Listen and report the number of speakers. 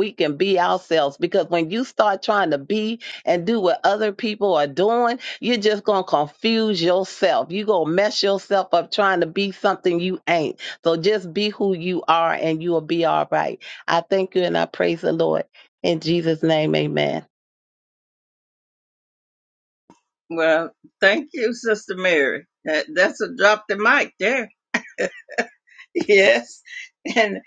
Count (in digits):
2